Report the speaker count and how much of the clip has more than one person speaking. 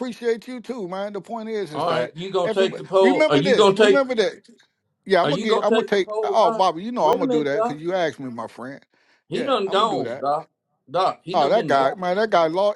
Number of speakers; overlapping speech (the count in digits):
2, about 44%